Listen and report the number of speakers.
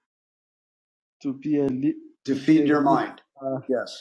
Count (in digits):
2